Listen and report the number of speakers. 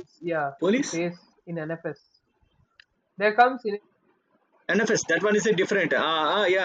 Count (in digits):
2